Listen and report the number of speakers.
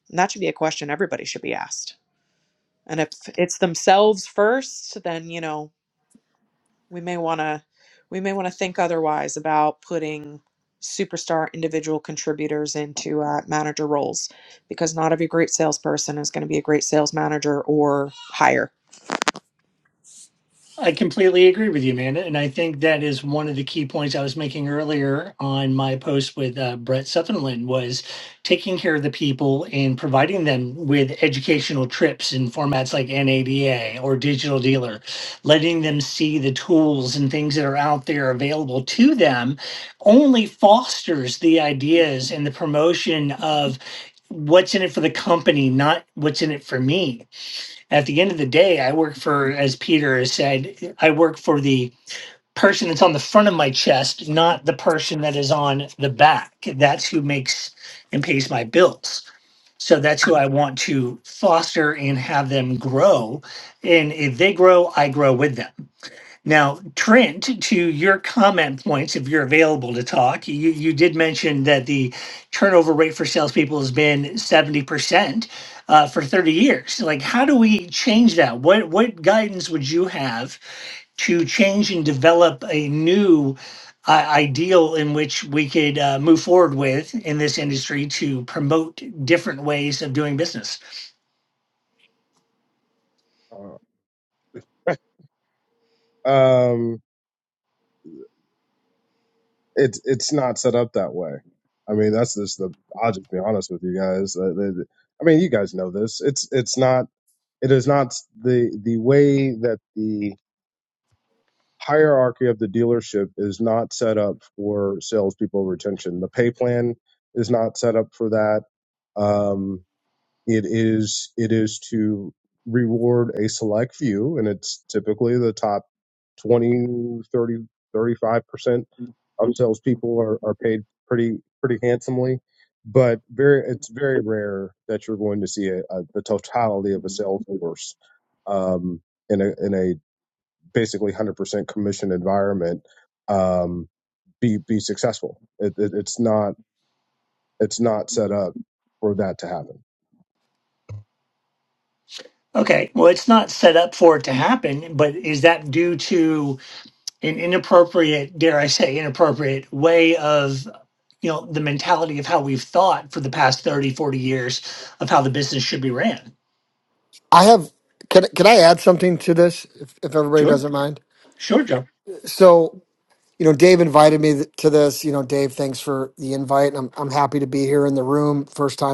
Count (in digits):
4